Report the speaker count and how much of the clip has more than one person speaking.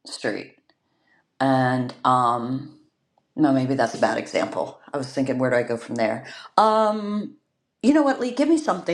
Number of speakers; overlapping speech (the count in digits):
1, no overlap